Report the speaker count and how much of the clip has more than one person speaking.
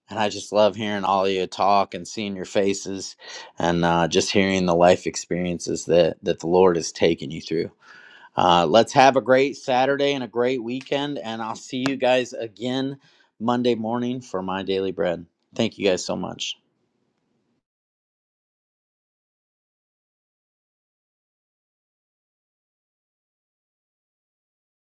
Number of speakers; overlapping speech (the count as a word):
one, no overlap